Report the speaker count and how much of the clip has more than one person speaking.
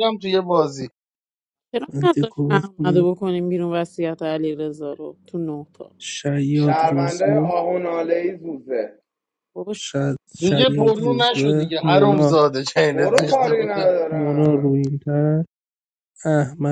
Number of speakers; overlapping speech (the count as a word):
four, about 33%